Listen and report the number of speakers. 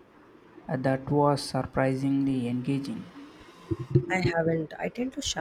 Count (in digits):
2